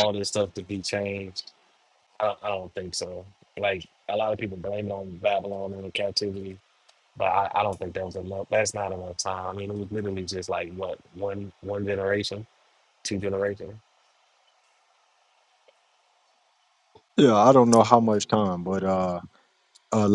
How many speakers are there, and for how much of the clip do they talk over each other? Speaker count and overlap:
two, no overlap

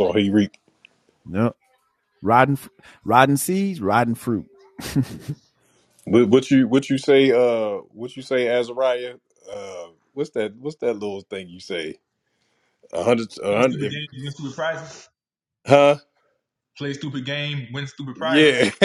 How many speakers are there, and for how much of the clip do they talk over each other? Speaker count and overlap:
three, about 5%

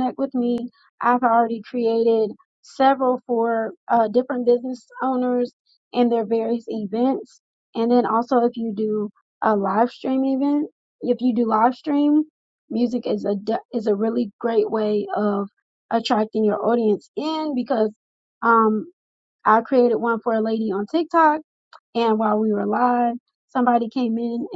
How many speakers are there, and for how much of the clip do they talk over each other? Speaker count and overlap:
one, no overlap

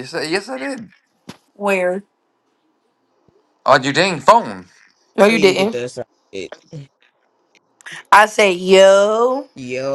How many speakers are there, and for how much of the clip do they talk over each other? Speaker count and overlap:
three, about 5%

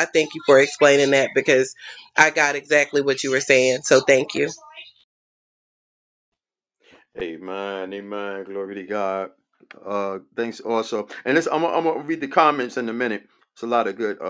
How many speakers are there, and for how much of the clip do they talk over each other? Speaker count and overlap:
two, no overlap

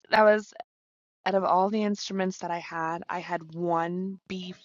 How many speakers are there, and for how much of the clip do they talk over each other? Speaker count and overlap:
one, no overlap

